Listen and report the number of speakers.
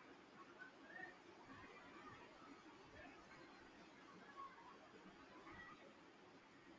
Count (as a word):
zero